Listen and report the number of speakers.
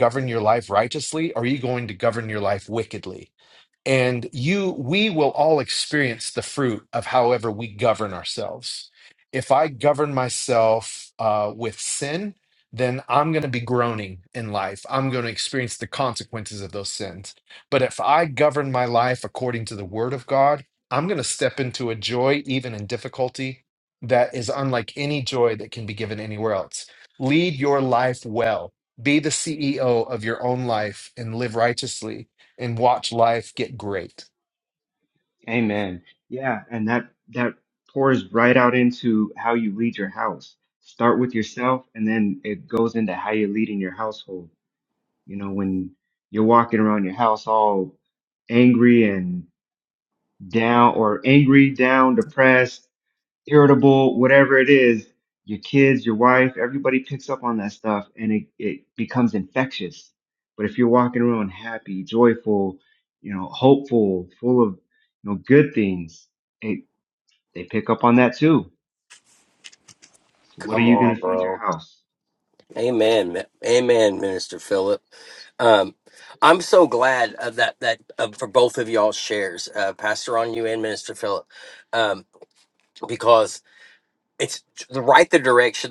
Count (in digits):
3